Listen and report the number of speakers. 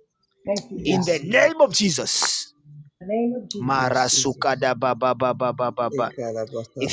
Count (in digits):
3